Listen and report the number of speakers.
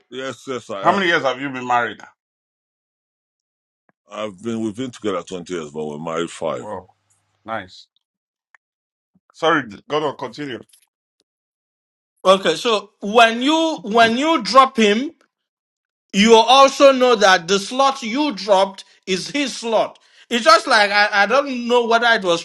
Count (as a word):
three